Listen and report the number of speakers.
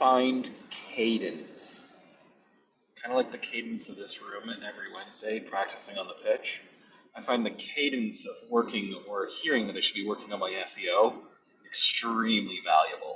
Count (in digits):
1